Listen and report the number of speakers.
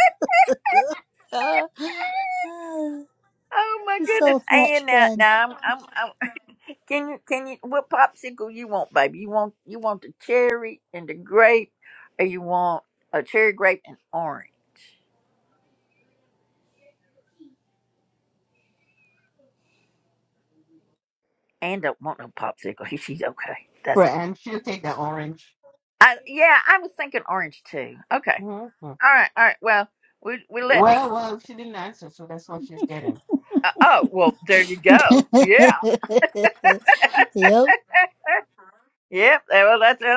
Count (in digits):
3